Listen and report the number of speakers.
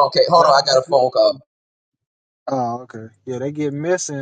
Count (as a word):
two